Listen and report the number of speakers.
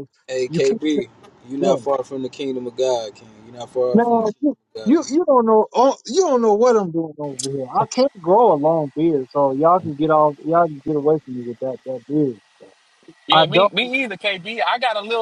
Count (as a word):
three